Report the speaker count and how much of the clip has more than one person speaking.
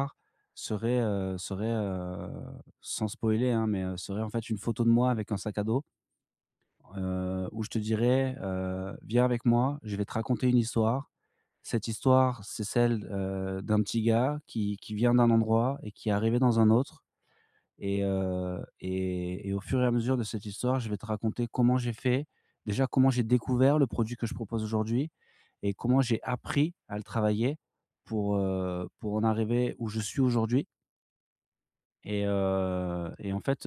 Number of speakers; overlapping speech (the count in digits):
1, no overlap